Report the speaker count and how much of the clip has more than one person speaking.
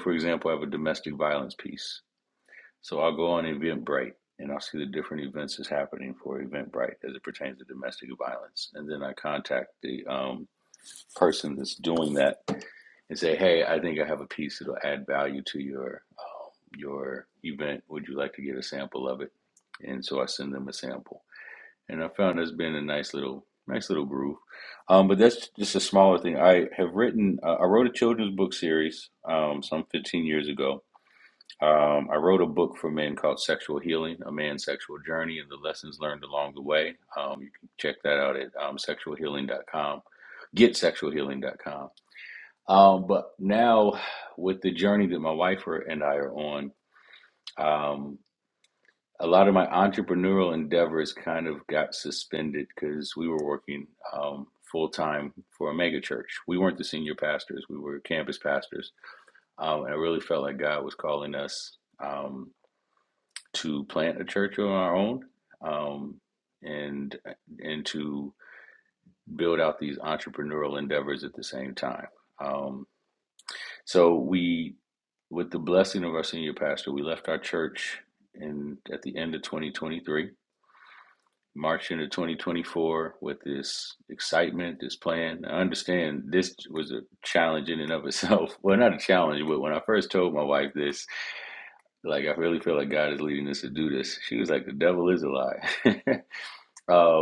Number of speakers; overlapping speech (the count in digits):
1, no overlap